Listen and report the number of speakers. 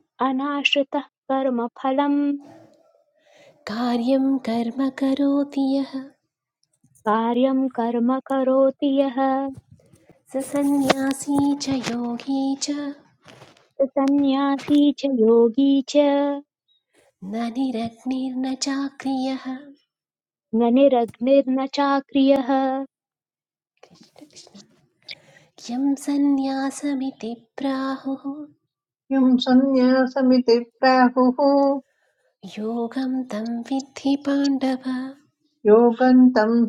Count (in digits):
3